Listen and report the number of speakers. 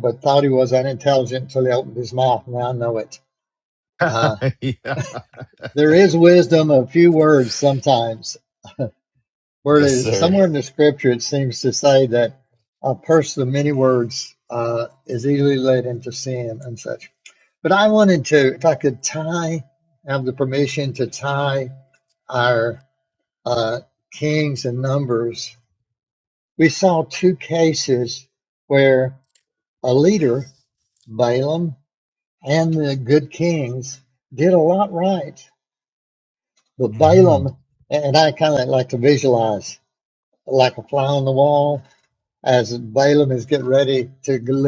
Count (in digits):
2